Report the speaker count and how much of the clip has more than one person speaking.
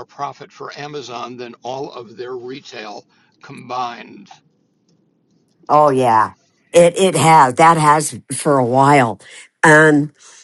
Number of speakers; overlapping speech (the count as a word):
two, no overlap